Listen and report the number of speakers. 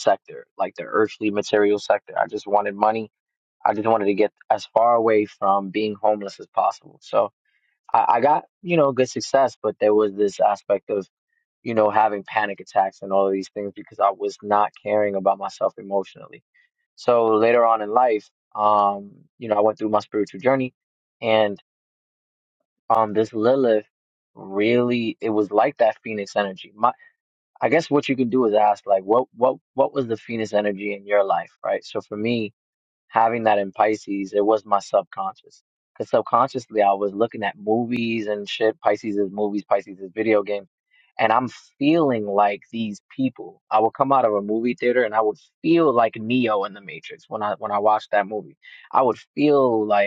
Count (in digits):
1